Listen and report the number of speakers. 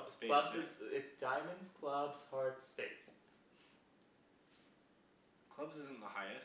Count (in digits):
2